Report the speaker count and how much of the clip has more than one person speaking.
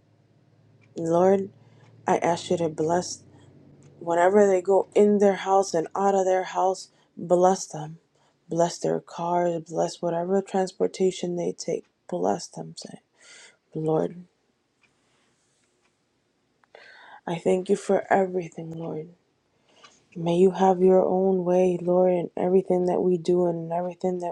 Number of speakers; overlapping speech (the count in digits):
1, no overlap